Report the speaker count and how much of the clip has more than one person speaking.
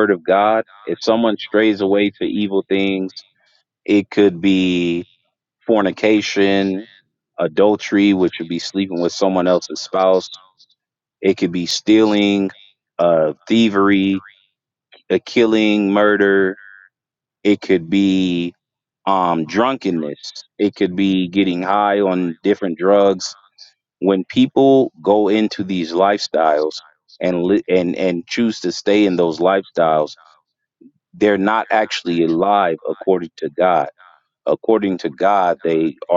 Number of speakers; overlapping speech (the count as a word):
one, no overlap